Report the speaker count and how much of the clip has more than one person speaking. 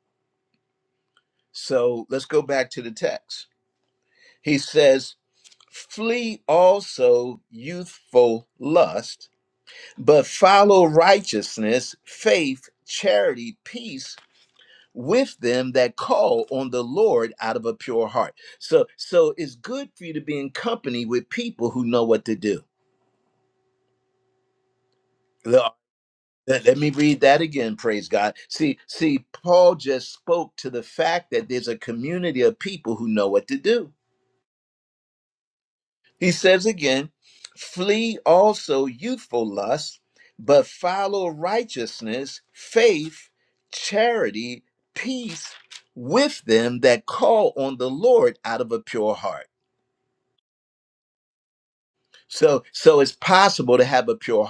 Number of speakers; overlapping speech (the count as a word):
one, no overlap